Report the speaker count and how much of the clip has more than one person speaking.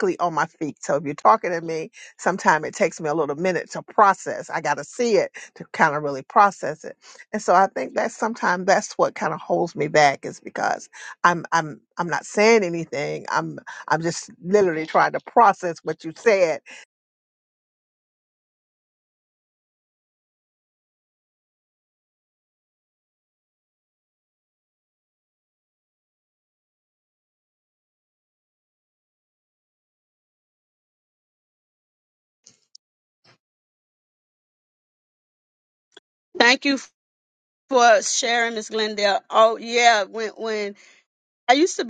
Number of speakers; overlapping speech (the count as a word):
two, no overlap